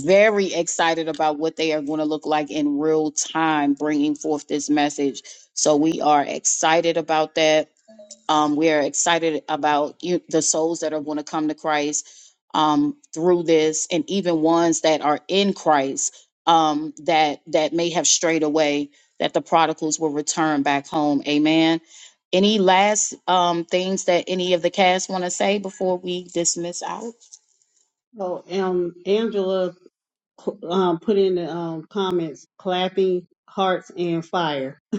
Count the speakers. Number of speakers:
2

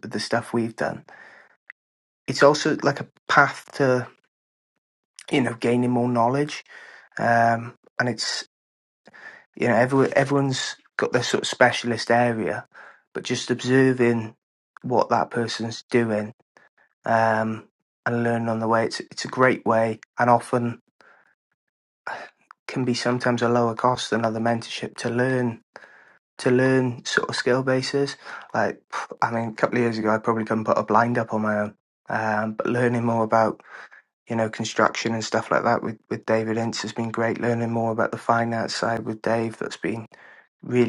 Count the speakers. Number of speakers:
1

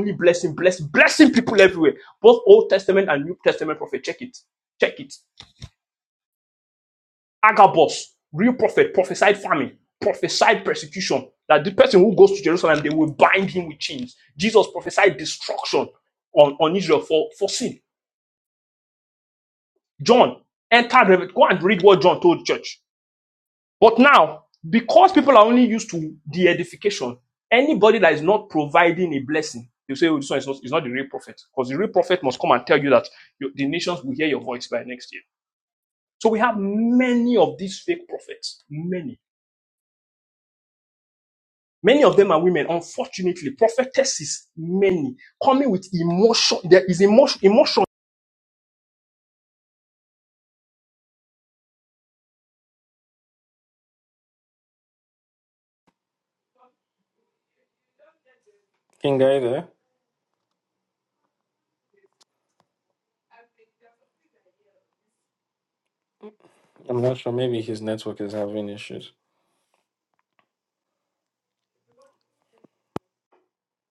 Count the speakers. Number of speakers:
2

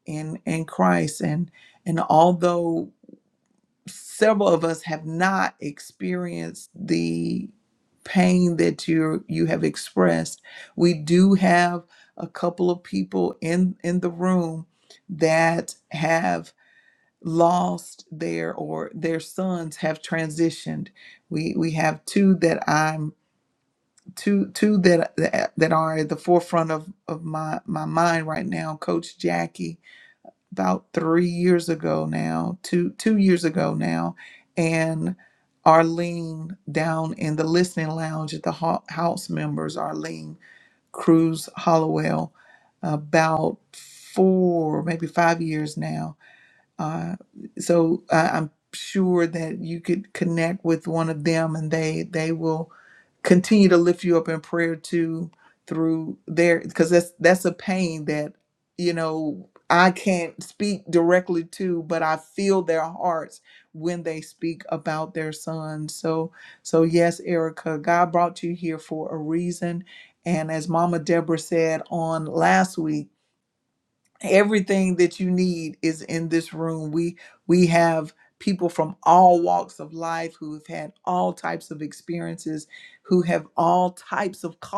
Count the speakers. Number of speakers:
1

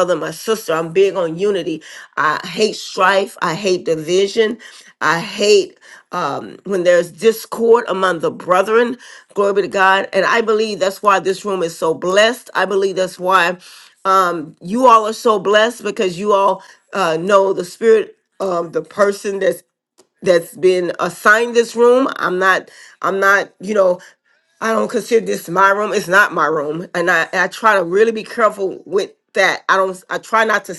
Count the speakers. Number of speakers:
1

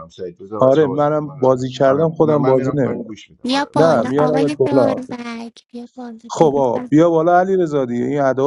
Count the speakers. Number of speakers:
3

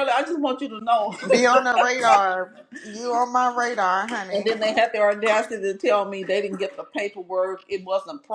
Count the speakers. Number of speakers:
2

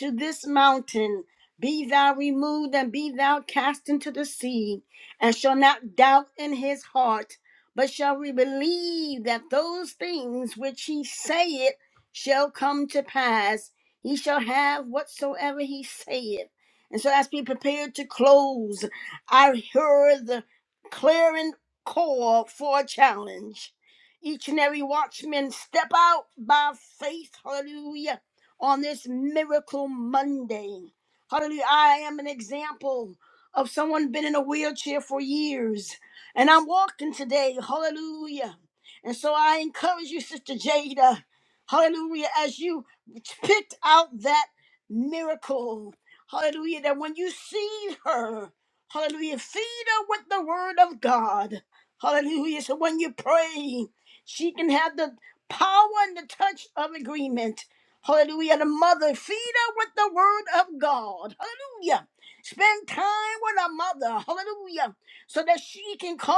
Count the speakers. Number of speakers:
1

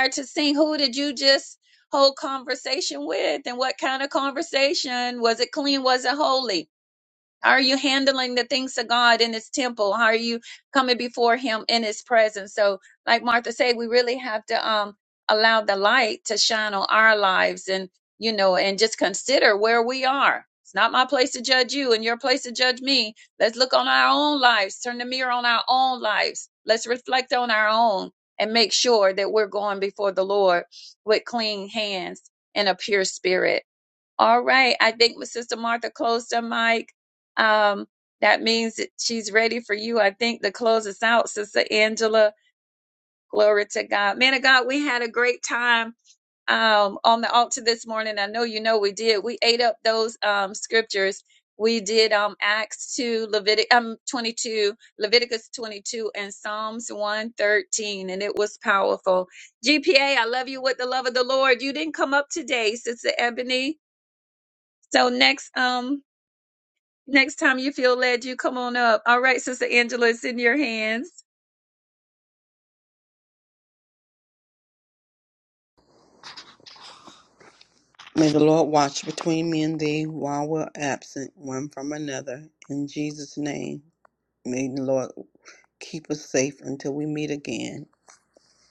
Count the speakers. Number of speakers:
2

